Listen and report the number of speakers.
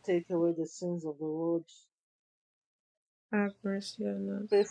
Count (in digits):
2